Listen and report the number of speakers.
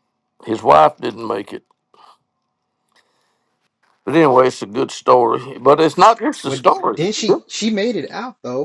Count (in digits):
2